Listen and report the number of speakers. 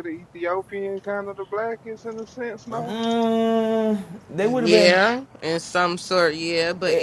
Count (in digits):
3